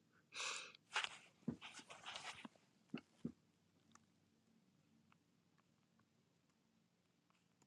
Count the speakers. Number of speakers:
0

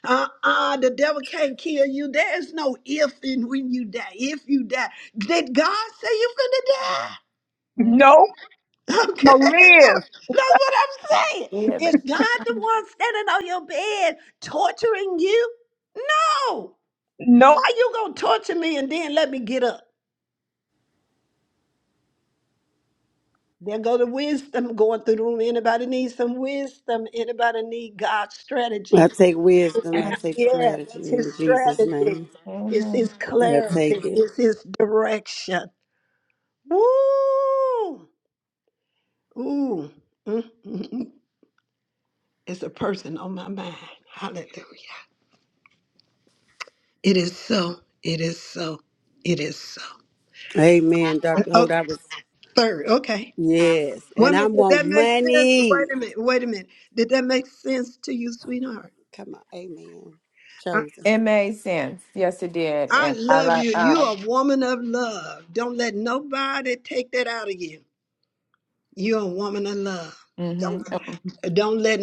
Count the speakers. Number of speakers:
4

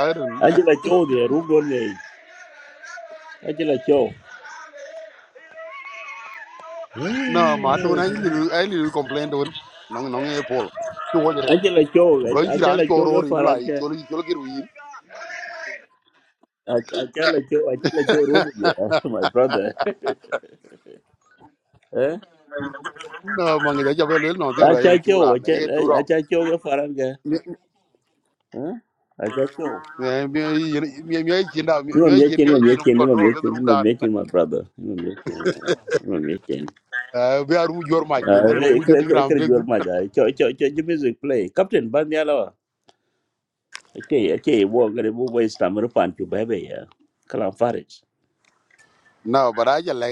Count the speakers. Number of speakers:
2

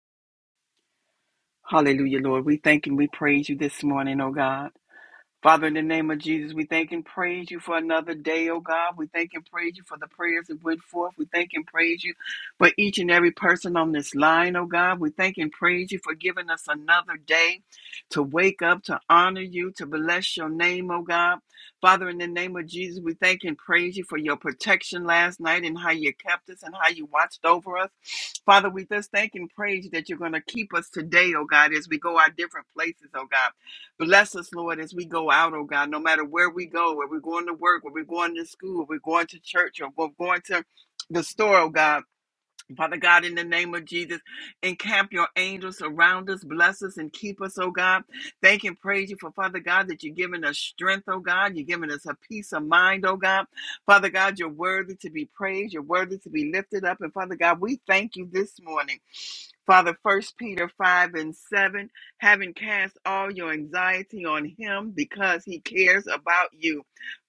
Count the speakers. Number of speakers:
1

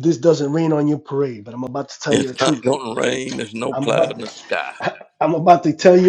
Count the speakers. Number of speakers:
2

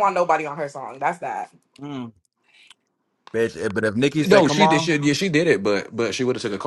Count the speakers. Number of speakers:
3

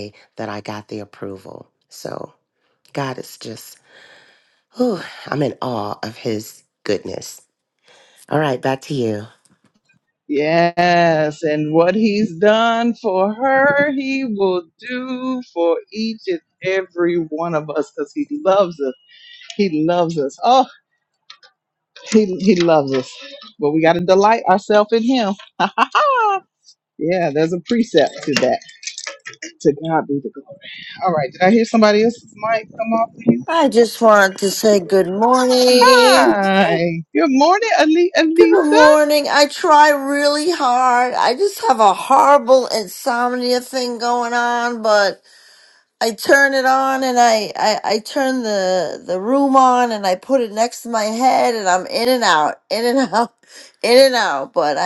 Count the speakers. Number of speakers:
3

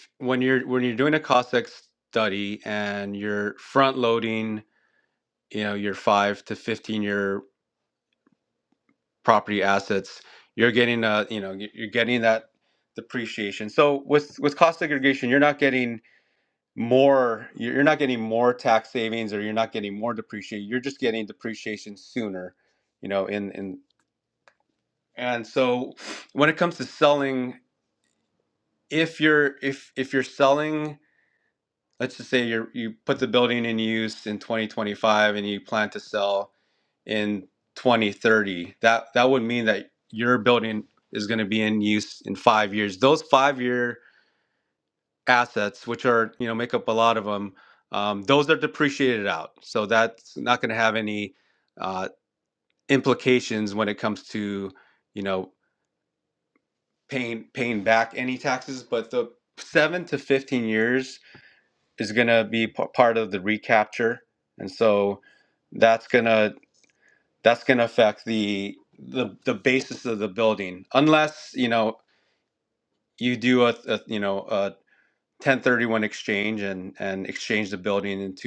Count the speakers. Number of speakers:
1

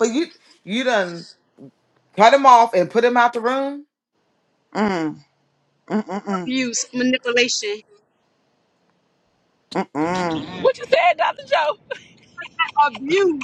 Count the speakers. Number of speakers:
4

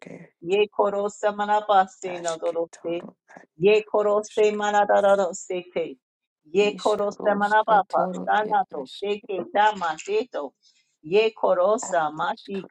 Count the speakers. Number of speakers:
2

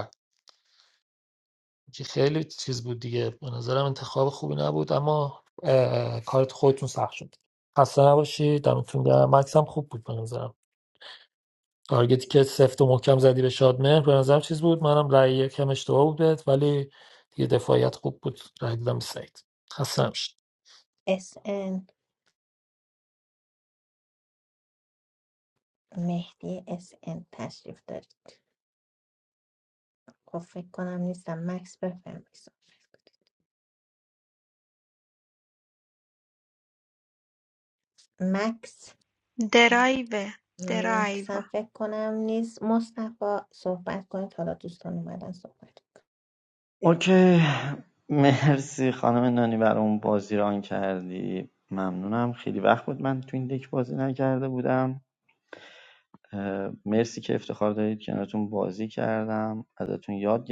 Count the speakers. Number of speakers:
4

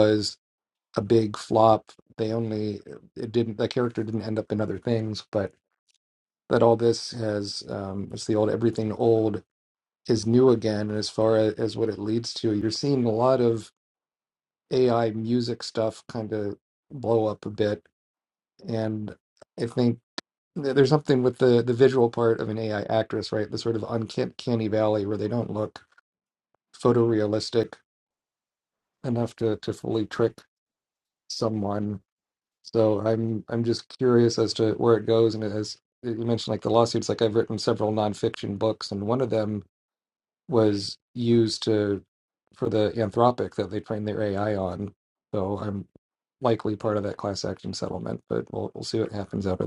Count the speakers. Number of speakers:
1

